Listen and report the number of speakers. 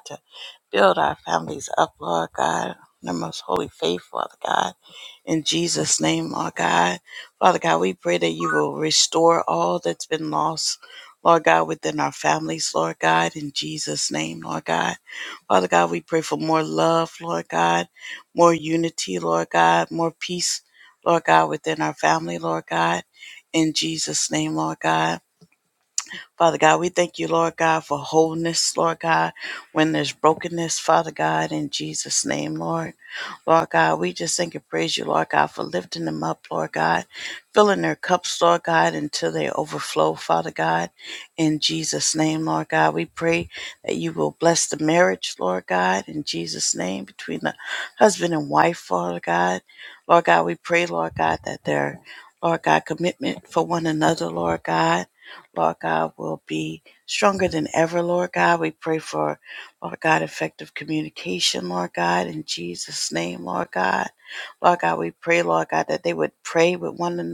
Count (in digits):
1